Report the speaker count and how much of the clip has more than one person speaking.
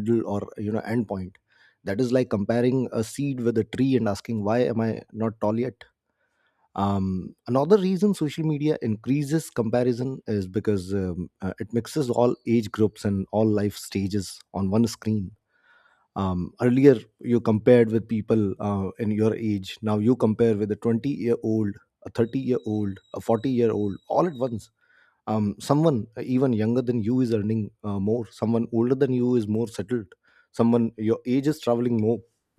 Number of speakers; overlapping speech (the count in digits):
1, no overlap